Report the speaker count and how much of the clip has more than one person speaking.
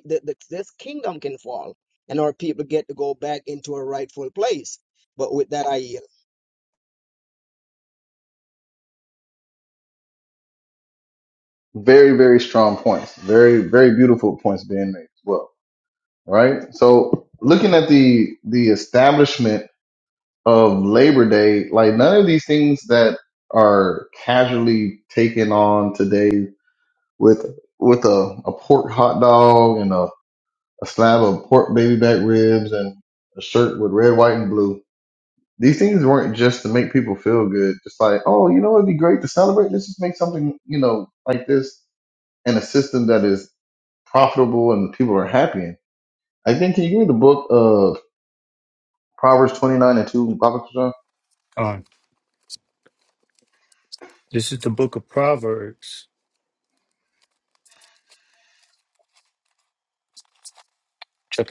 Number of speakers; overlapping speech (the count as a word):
three, no overlap